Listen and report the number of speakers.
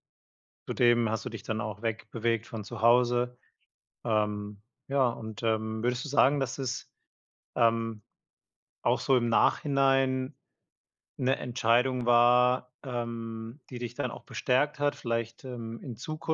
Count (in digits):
1